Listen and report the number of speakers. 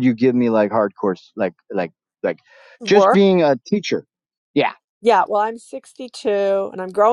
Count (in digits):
2